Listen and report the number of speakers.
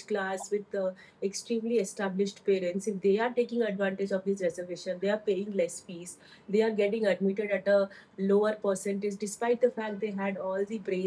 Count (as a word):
one